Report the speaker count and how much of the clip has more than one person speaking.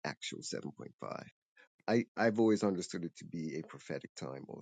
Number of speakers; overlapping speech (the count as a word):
one, no overlap